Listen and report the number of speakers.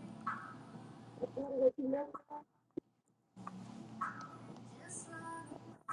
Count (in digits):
0